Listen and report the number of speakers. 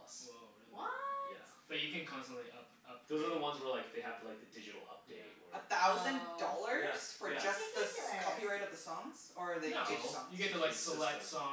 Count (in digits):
4